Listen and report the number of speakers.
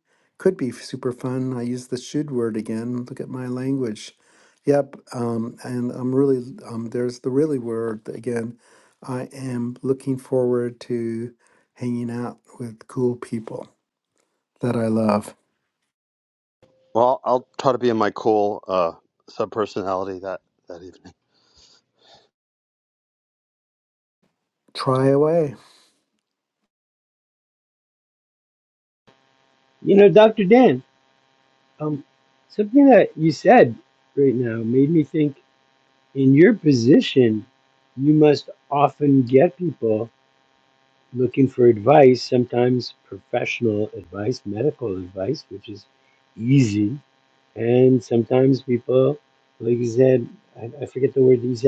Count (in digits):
3